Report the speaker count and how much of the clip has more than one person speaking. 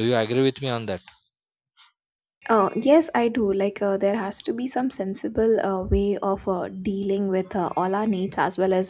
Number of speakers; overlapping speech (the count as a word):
two, no overlap